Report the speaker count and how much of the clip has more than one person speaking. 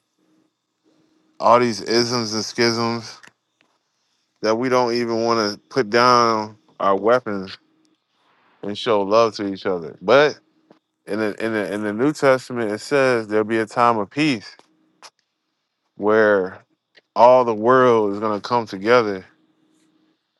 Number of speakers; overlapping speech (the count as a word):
one, no overlap